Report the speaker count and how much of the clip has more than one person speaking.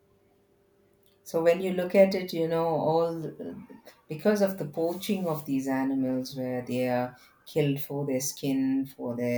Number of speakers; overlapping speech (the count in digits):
1, no overlap